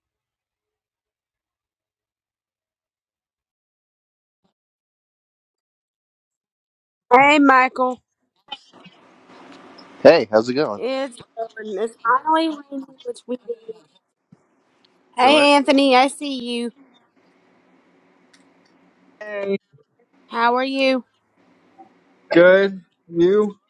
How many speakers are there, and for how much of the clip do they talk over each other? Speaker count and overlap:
3, about 1%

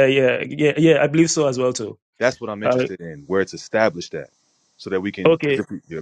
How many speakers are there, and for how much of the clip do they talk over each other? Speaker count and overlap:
2, about 11%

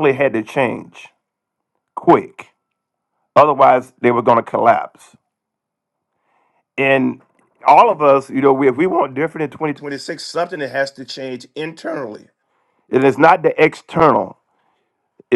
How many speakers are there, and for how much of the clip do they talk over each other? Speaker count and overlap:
1, no overlap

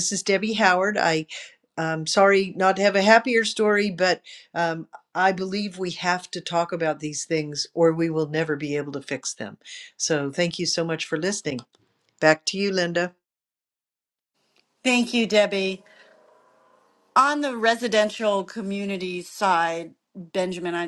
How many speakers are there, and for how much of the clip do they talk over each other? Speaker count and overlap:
2, no overlap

